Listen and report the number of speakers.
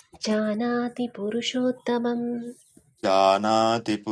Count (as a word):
two